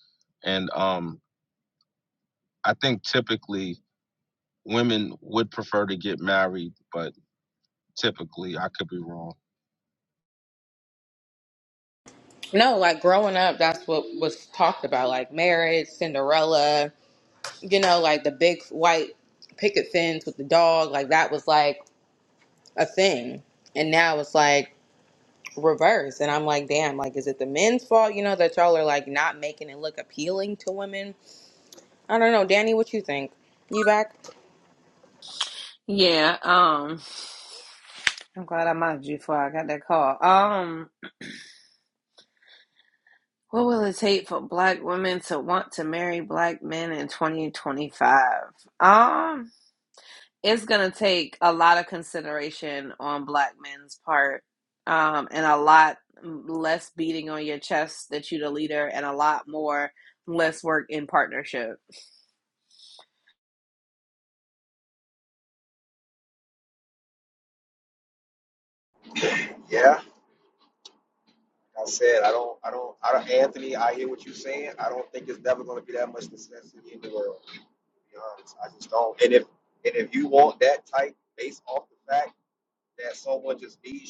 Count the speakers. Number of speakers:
four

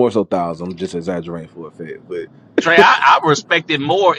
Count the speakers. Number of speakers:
two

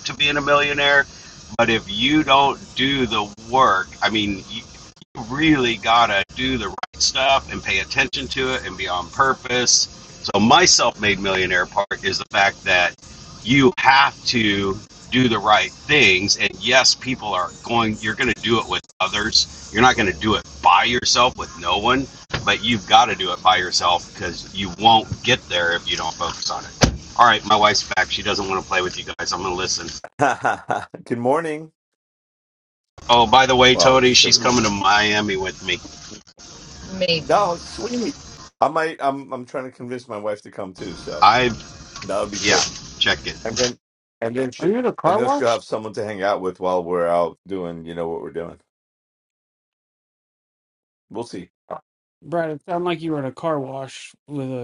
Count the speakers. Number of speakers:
three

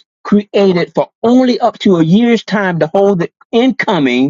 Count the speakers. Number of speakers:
one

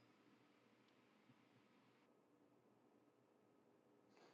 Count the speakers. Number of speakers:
zero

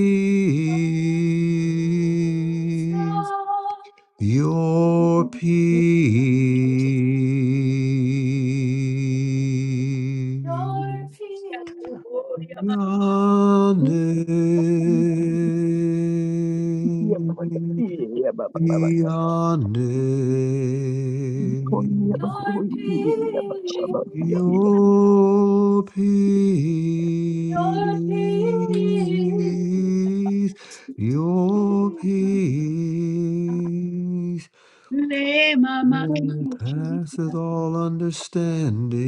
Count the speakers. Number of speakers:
four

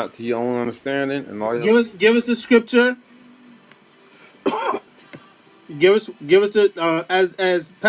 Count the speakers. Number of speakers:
two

